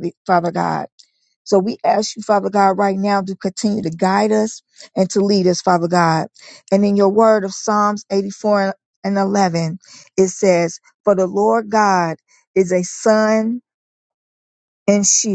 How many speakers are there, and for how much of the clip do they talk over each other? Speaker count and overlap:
1, no overlap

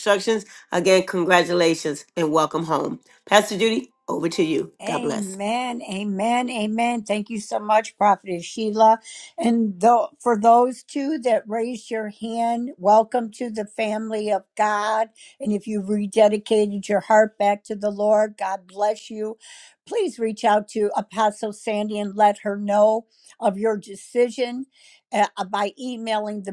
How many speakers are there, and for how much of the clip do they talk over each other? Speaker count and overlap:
2, about 2%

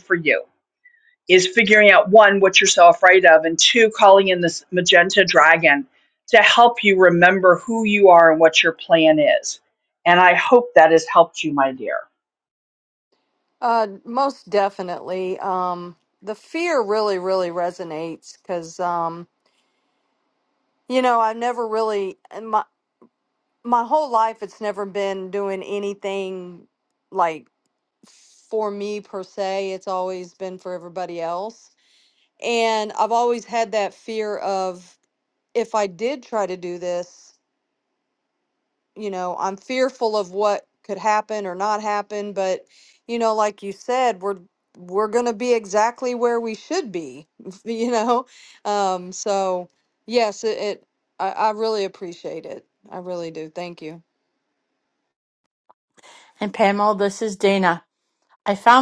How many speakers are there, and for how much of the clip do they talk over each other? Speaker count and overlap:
3, no overlap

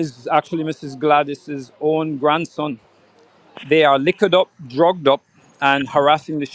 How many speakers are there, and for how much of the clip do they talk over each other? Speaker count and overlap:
1, no overlap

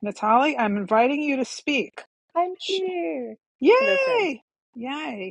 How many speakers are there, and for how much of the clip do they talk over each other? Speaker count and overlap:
2, about 13%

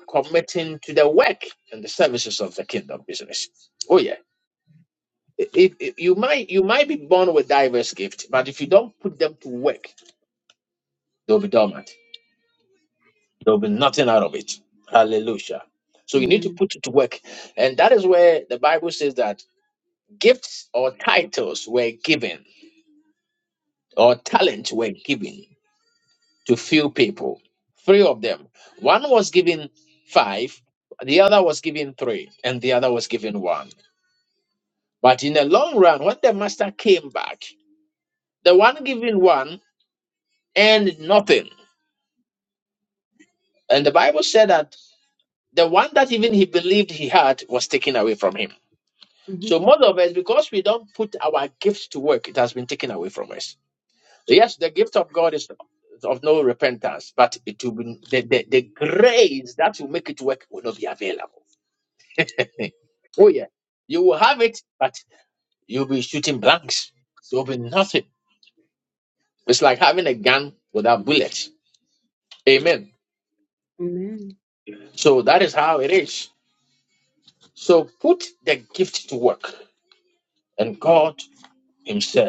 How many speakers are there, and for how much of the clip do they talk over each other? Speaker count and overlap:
2, about 1%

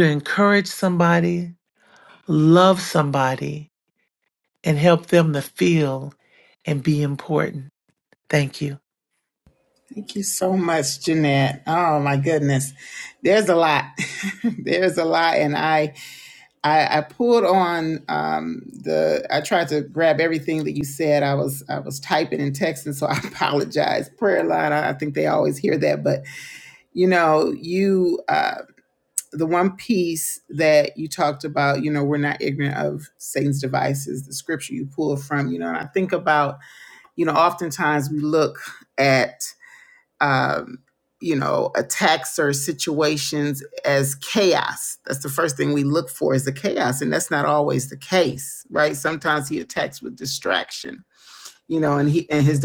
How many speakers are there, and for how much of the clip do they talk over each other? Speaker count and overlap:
2, no overlap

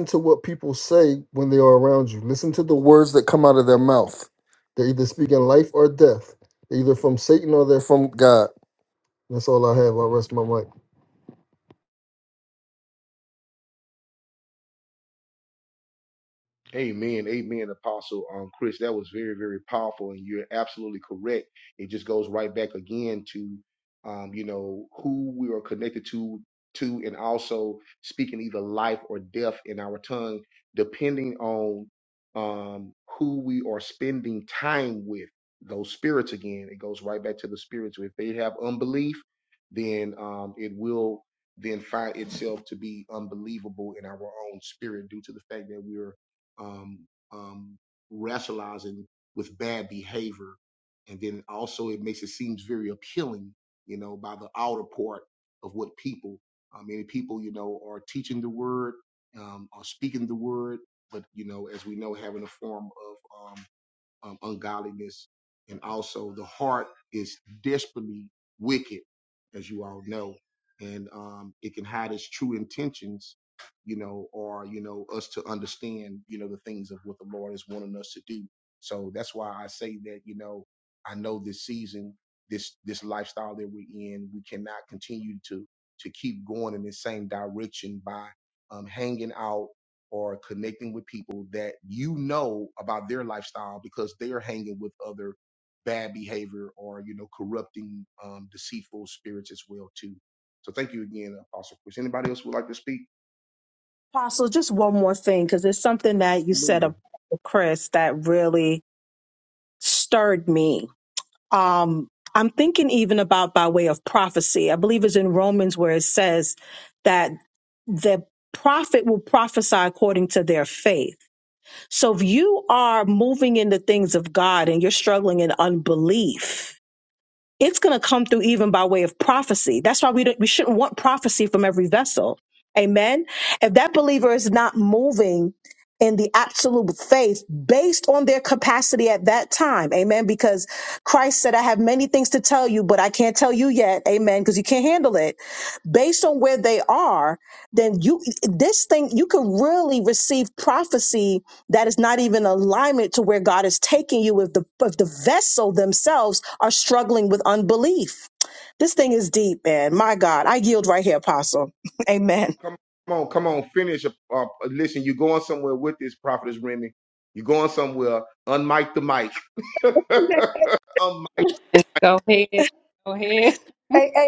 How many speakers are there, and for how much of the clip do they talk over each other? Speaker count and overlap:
4, under 1%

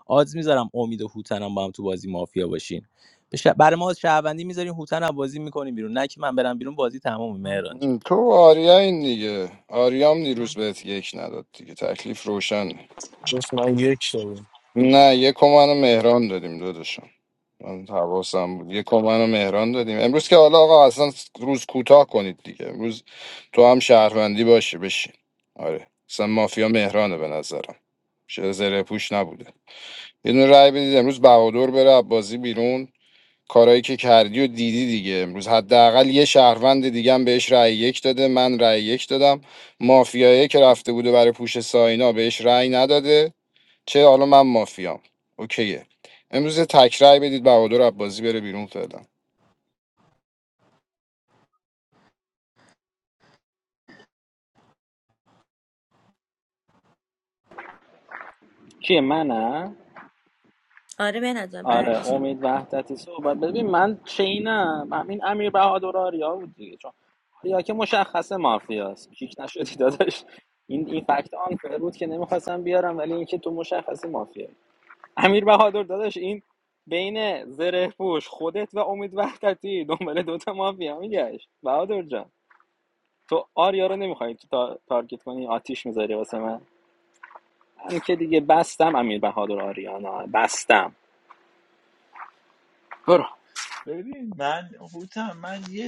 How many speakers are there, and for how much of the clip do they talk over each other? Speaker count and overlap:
6, about 1%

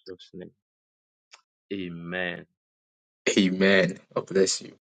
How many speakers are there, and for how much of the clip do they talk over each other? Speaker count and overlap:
2, no overlap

